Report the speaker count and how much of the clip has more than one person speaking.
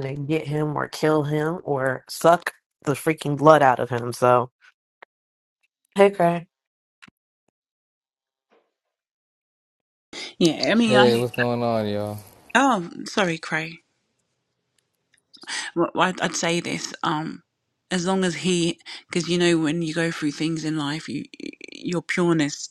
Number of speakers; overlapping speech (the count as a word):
three, about 3%